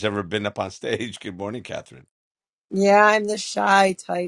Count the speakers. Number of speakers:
two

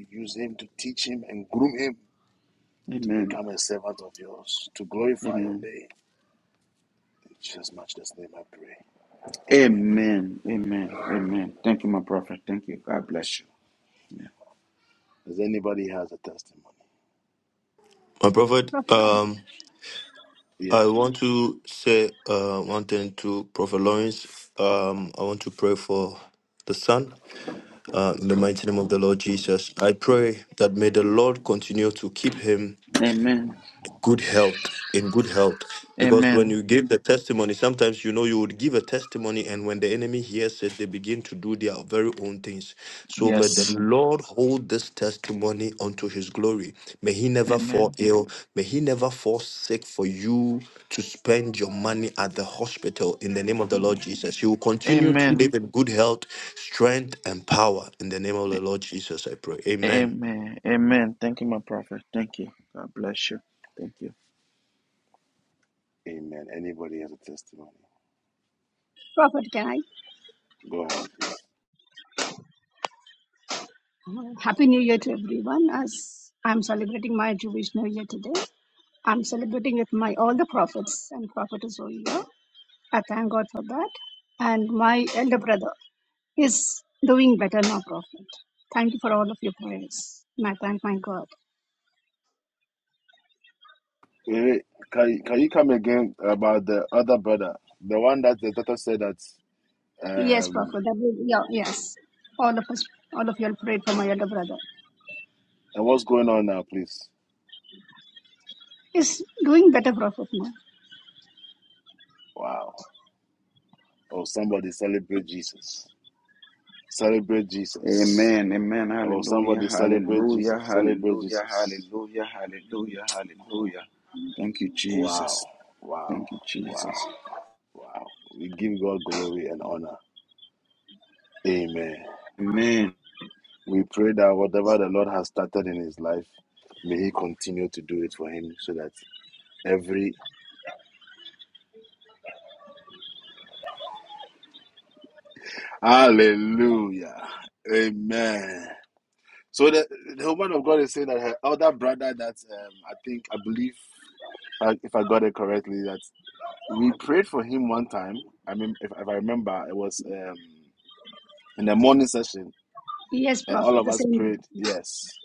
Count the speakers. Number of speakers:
four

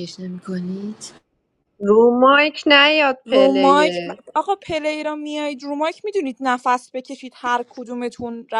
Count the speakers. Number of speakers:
three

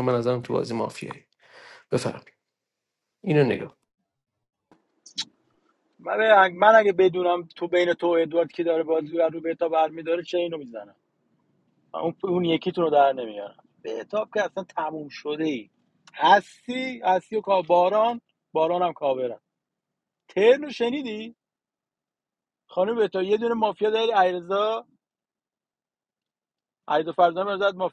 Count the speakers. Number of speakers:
two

